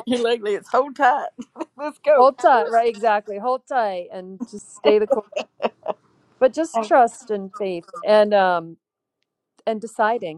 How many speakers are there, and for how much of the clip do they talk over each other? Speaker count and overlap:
two, about 1%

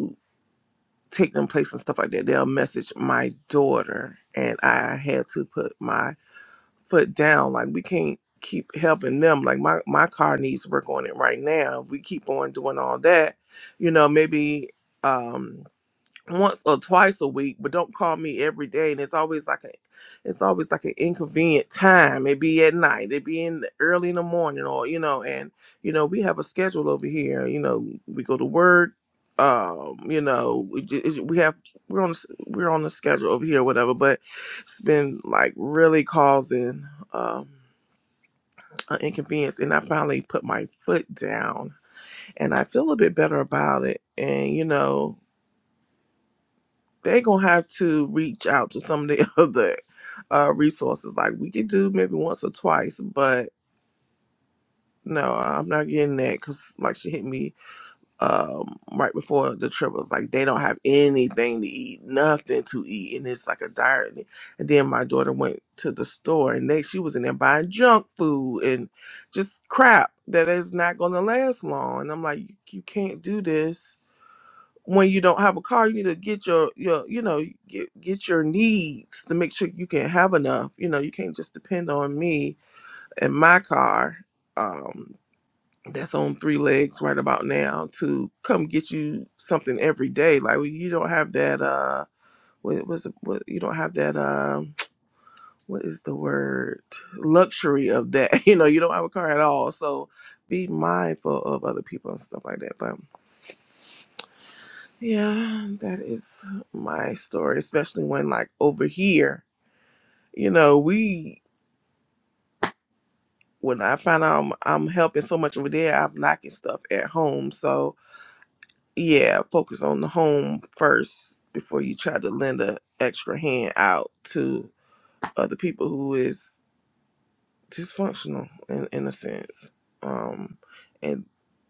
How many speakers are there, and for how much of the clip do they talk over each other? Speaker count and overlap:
one, no overlap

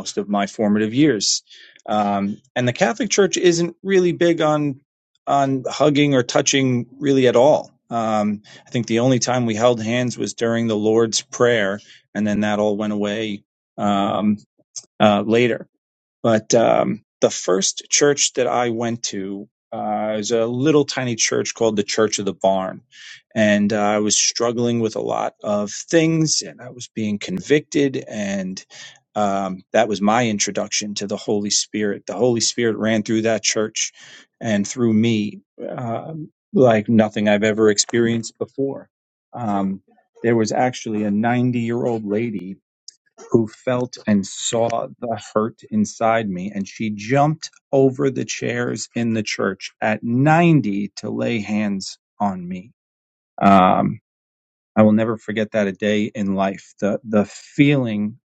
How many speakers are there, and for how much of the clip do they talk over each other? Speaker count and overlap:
one, no overlap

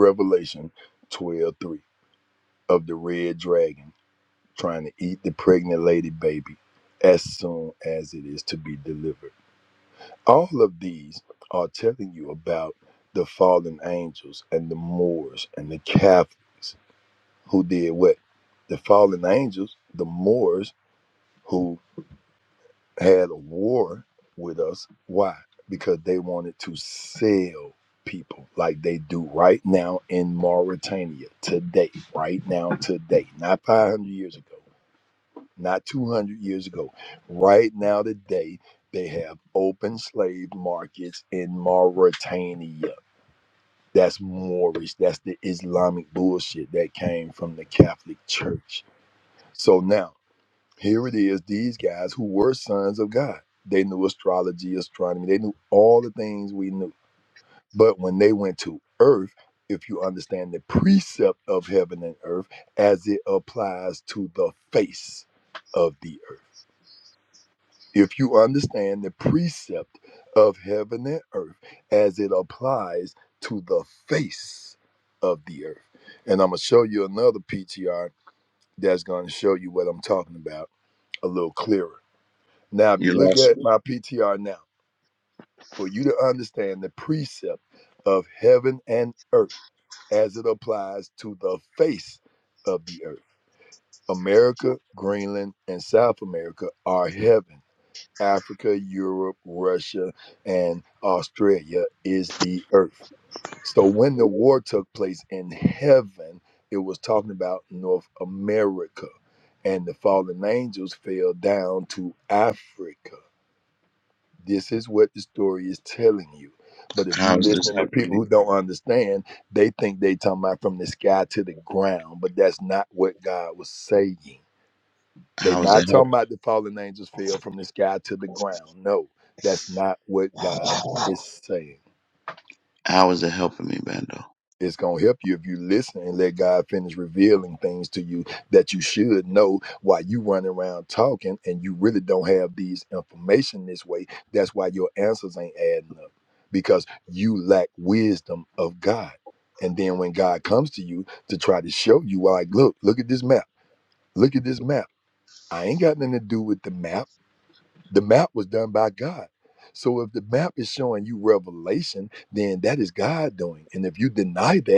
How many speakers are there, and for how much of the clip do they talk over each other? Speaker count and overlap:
two, about 2%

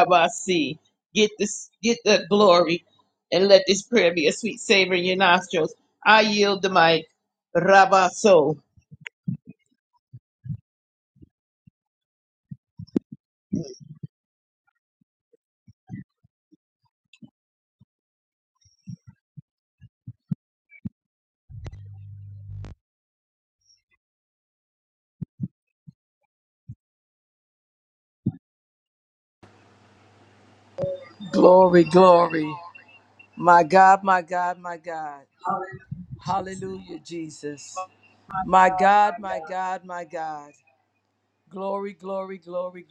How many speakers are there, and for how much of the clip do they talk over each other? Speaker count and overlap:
two, no overlap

